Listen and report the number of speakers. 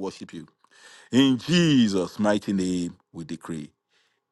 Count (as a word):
one